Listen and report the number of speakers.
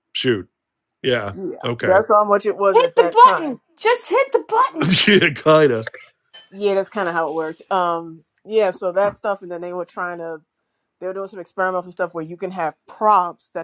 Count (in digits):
3